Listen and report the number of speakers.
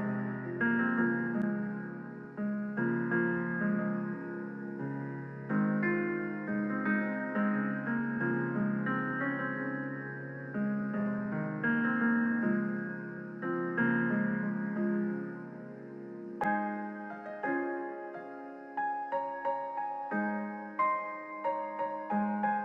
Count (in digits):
0